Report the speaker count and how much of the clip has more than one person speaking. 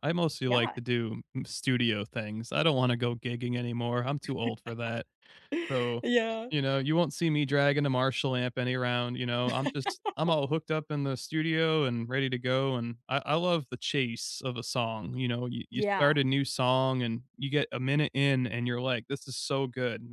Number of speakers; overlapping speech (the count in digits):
2, about 4%